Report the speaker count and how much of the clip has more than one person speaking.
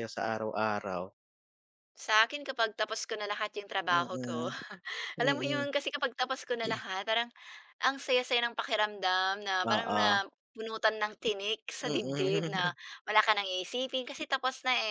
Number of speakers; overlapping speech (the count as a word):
two, about 17%